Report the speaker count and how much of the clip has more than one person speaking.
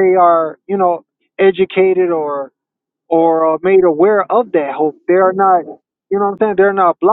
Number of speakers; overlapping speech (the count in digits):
1, no overlap